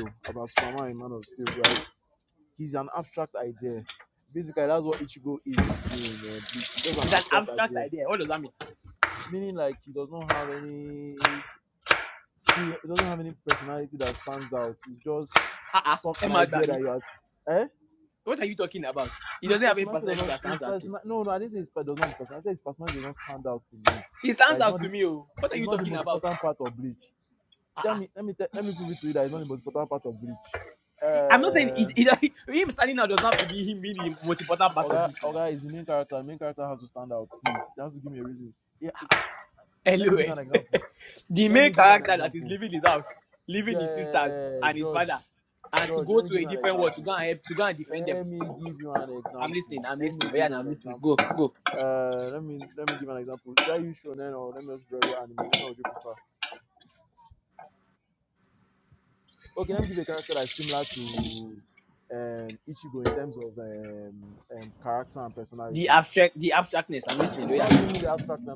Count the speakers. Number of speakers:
two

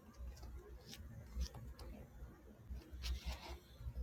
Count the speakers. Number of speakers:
zero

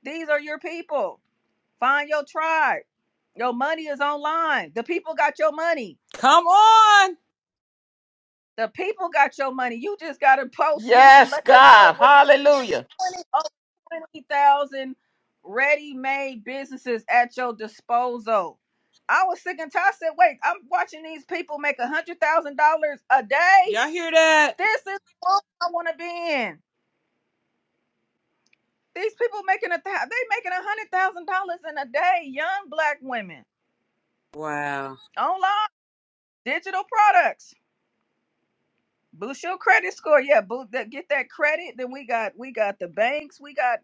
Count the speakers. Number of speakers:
three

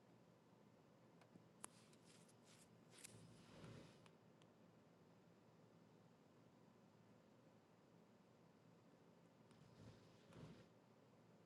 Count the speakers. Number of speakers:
zero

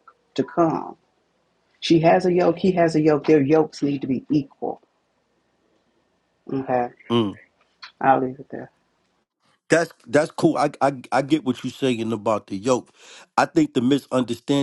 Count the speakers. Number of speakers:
two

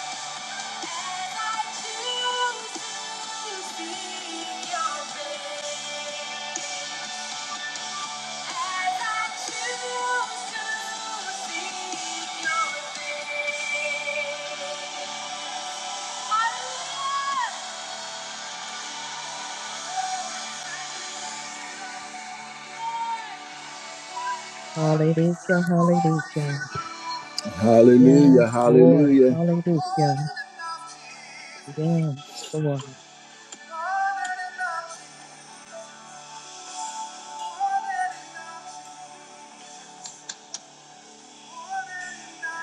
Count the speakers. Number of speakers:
two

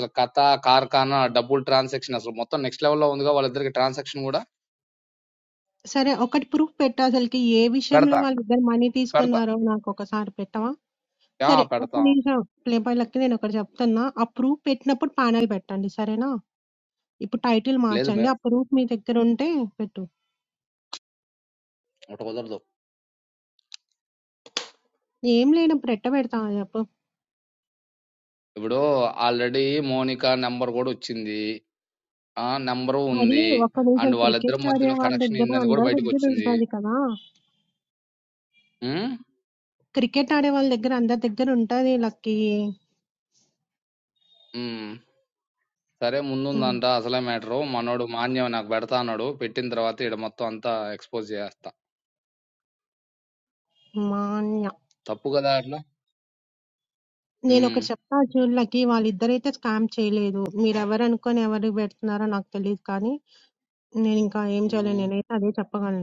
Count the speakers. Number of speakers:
two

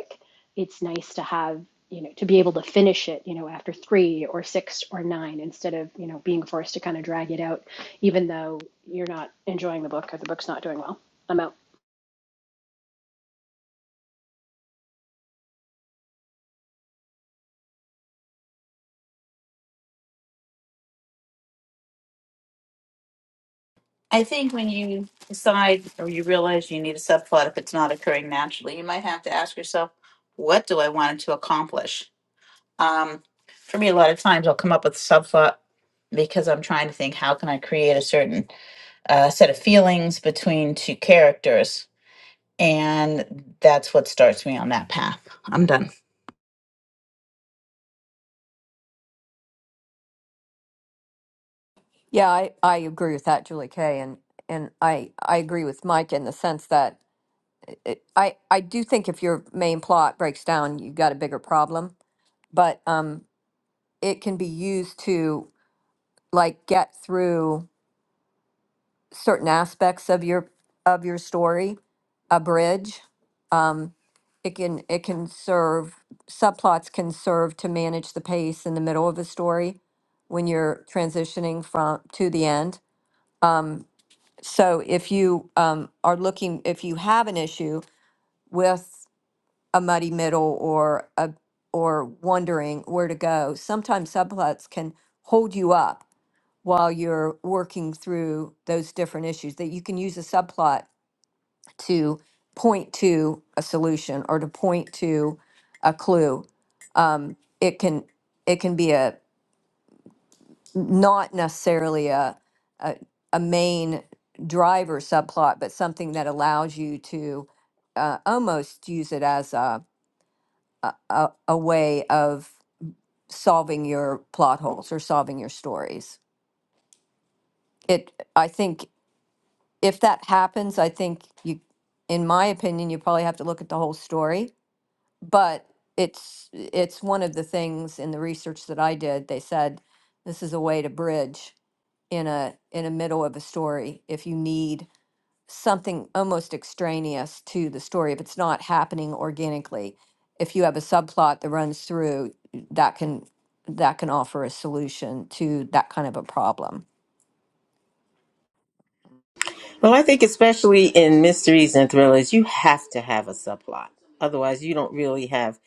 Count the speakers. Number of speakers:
four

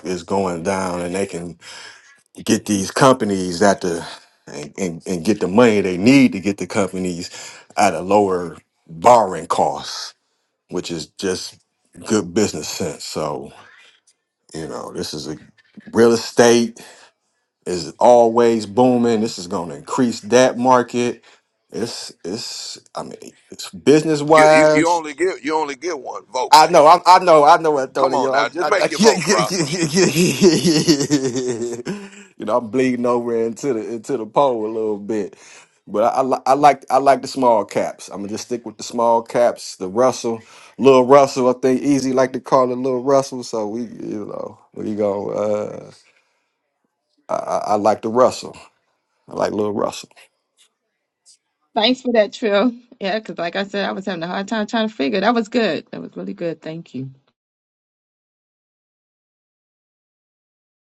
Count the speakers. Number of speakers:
three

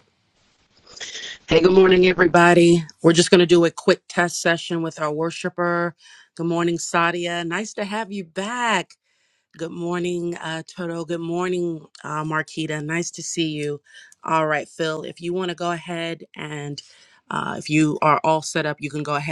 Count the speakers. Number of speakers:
one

